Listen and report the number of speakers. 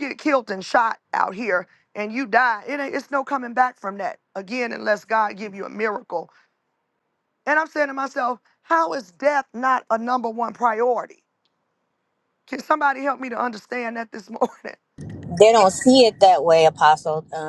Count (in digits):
2